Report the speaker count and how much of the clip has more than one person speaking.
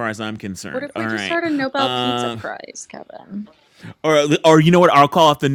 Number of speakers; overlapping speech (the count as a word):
two, about 24%